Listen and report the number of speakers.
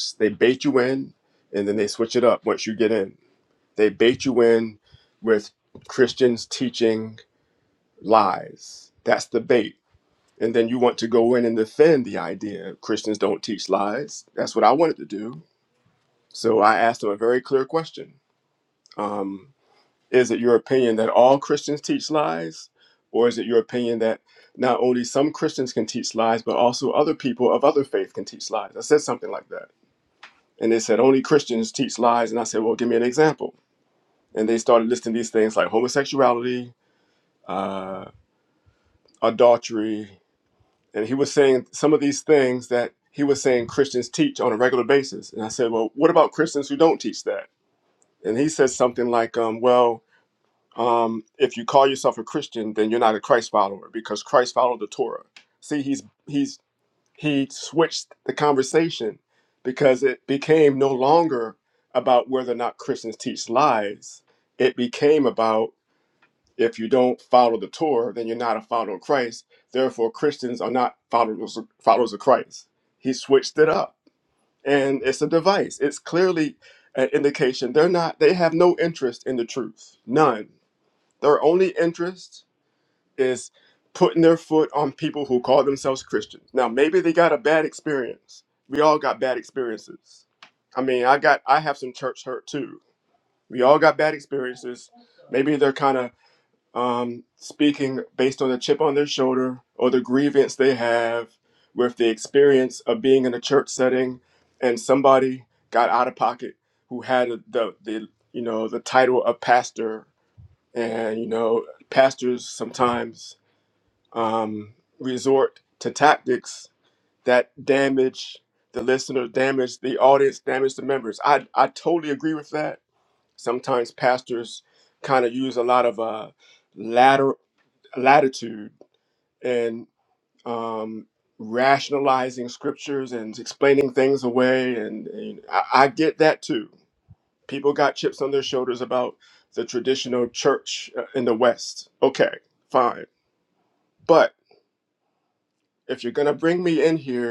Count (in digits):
1